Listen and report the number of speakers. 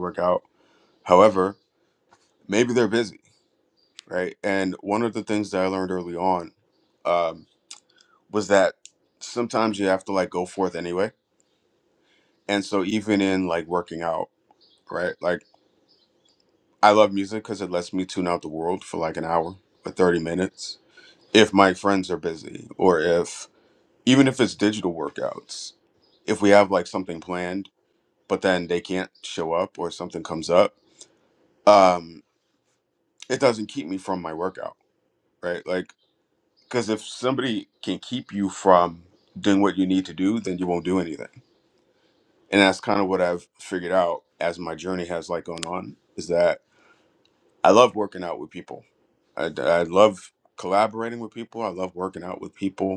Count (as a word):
one